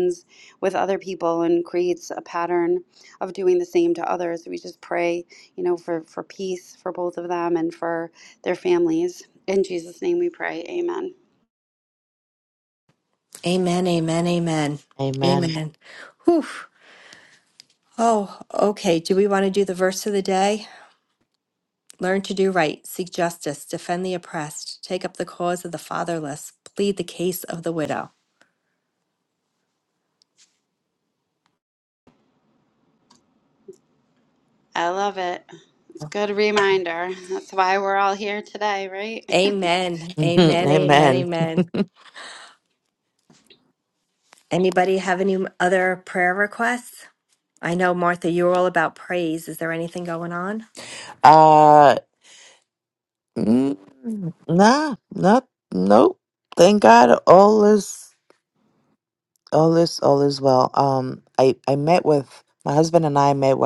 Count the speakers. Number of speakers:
three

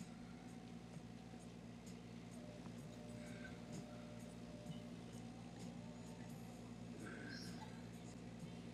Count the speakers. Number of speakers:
zero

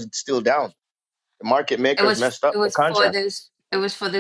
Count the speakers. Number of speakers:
two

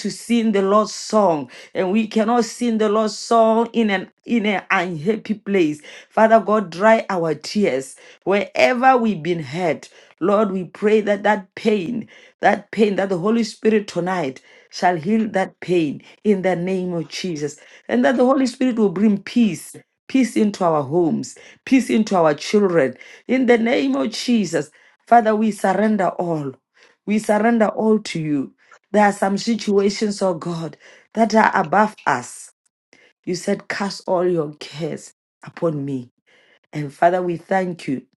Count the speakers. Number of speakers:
one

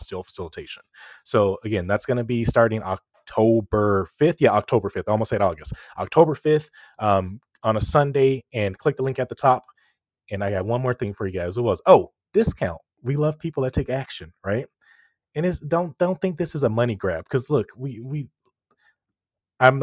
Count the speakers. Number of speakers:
one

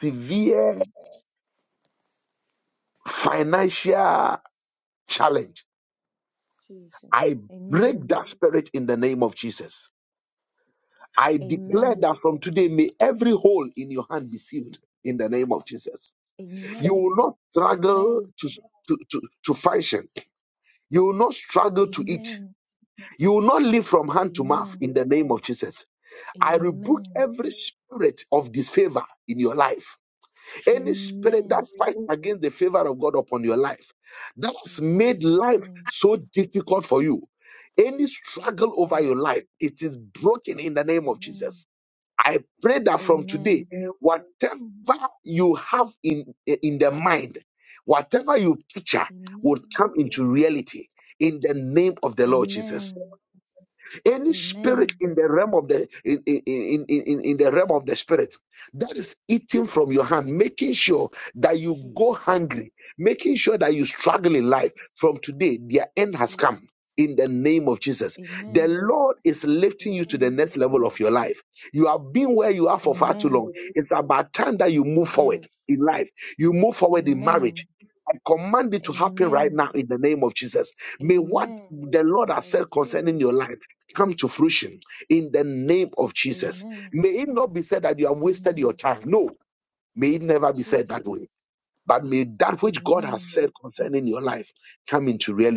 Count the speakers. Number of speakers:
two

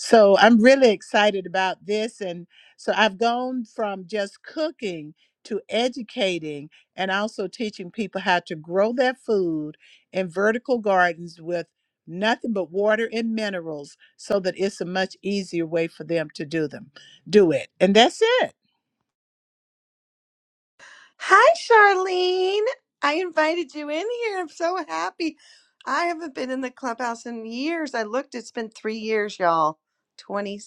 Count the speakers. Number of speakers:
two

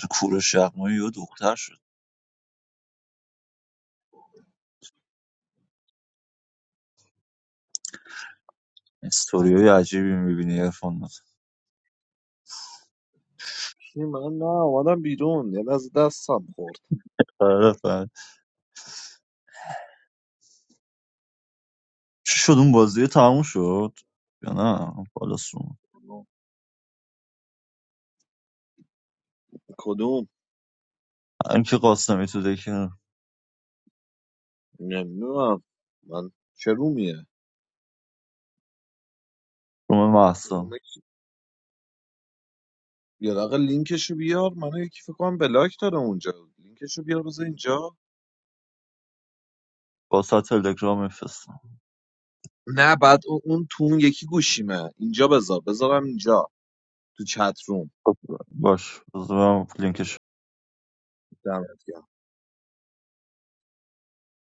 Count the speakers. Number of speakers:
two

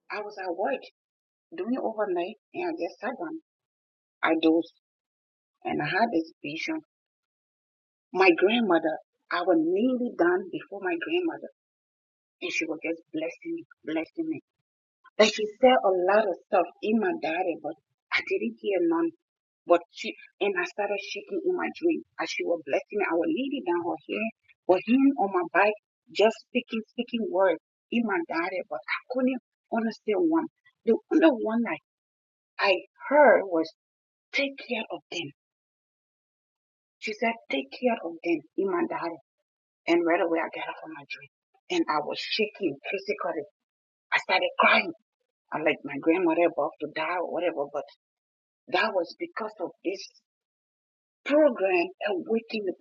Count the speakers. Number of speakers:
one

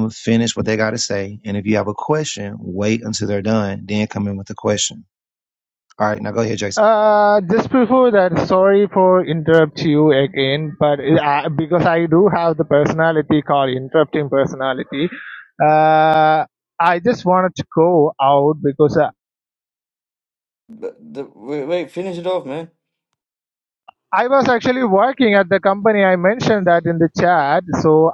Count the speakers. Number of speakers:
three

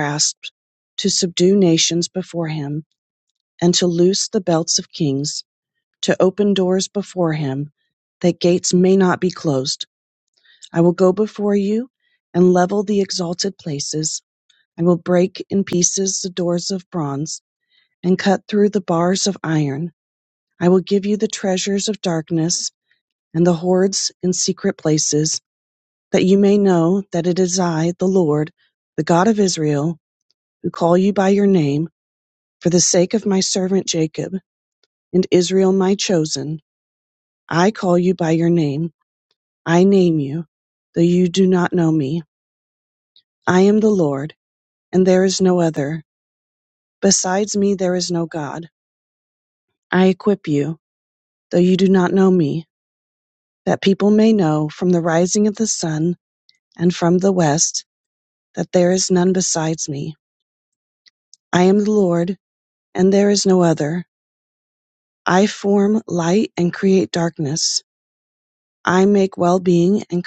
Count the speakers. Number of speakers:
one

